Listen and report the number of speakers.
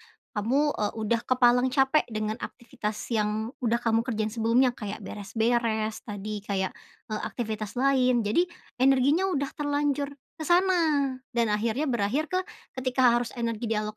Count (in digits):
1